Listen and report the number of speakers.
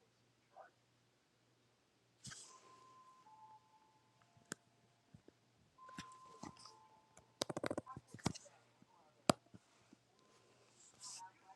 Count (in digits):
0